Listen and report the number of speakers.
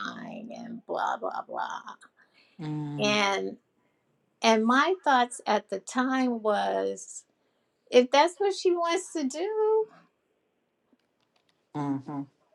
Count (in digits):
2